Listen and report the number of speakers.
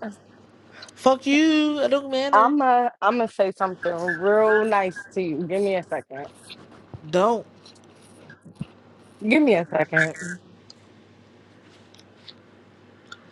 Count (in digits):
2